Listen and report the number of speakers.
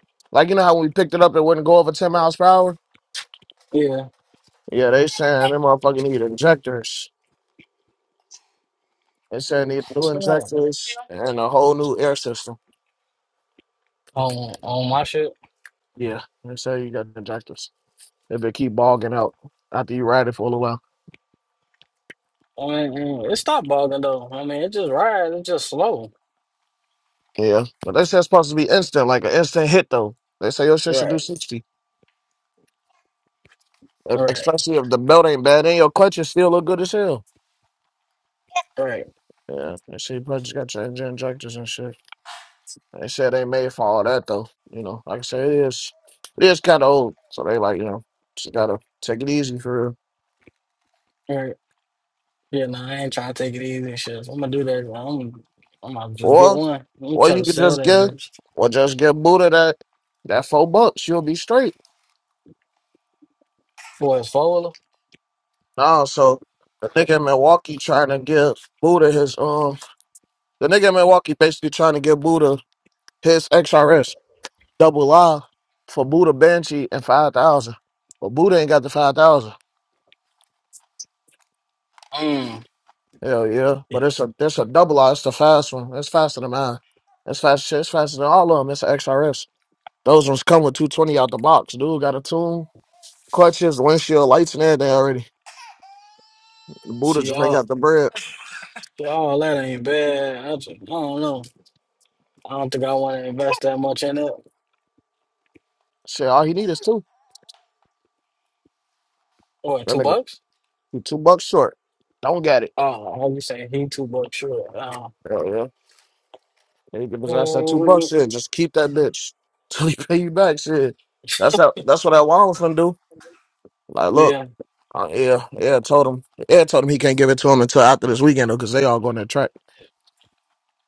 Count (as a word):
two